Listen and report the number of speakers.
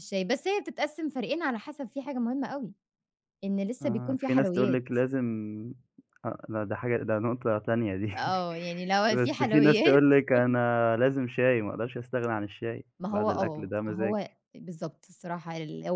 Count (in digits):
2